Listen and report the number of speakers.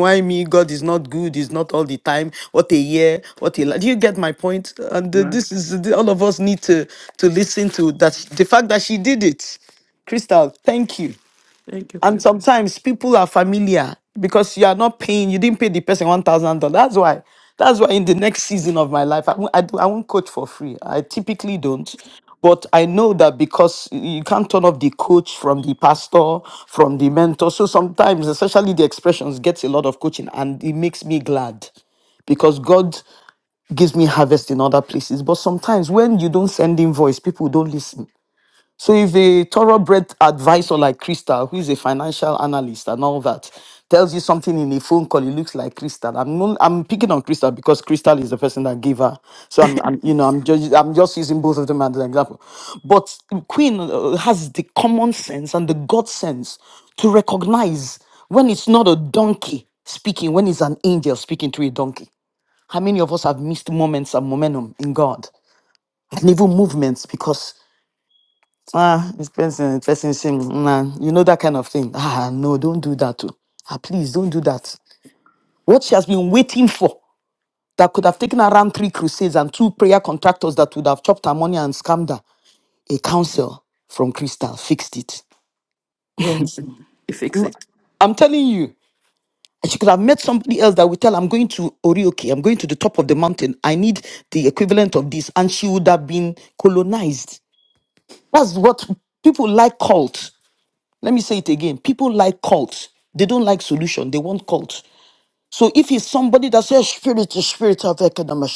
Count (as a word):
two